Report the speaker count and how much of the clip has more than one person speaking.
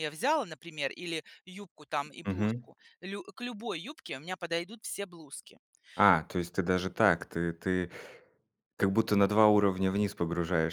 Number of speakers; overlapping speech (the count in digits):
2, about 3%